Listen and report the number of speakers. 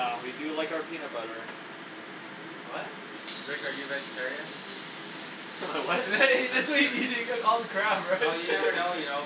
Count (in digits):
3